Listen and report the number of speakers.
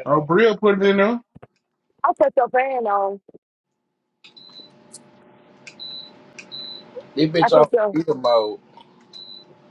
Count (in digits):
3